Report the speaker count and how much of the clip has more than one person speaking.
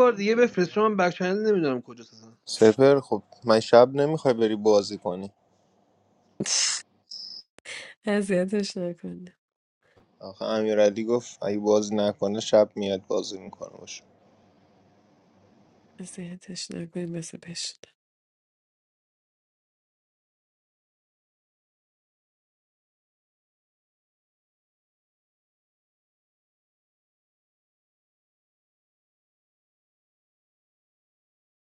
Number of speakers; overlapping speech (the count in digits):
3, no overlap